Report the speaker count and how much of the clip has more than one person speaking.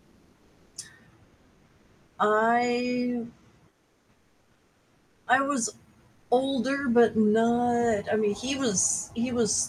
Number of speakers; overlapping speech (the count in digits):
1, no overlap